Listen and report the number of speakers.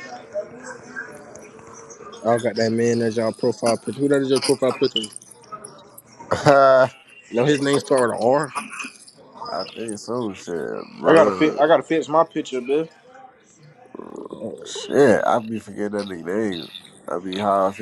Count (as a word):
three